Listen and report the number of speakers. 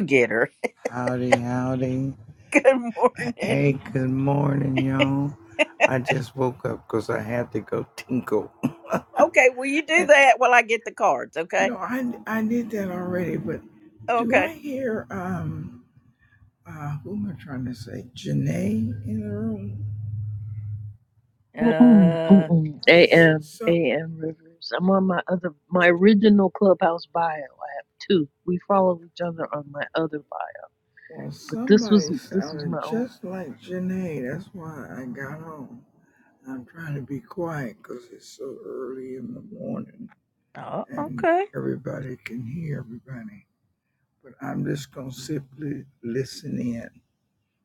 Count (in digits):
3